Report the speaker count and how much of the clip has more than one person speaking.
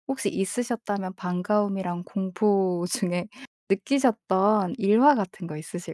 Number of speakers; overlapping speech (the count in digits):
1, no overlap